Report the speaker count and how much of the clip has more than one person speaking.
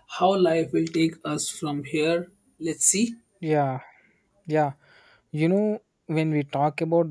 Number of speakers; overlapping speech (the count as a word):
two, no overlap